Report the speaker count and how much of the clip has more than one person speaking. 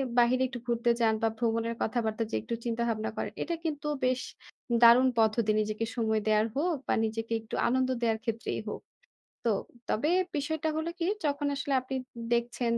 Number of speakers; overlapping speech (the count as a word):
one, no overlap